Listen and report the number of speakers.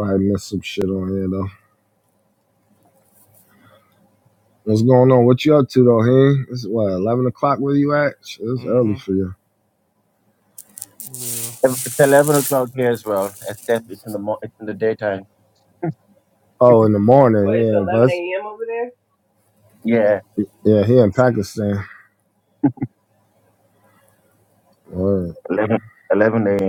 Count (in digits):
4